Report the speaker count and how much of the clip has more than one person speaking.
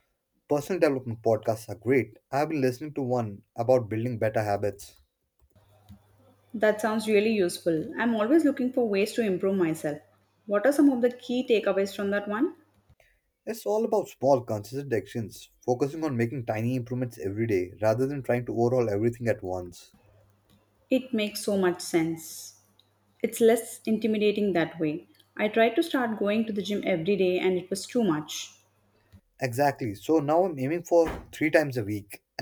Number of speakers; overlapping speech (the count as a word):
two, no overlap